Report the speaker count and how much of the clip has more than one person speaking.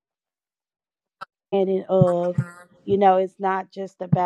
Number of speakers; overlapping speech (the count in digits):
1, no overlap